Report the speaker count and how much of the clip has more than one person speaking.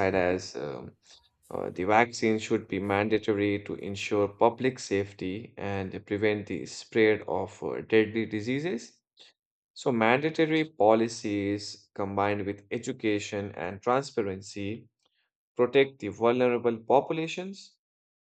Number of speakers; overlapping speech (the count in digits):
1, no overlap